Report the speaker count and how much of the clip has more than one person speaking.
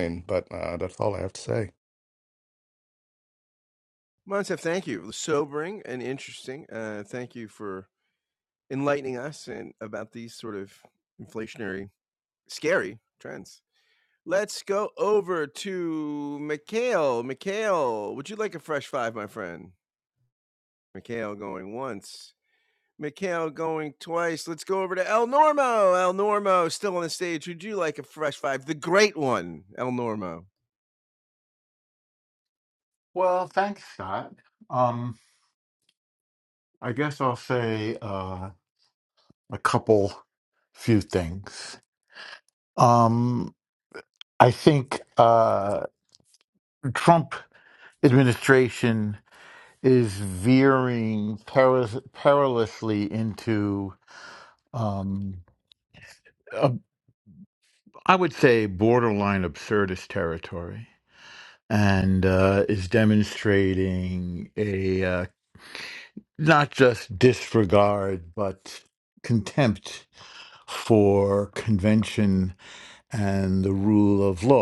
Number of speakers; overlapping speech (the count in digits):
3, no overlap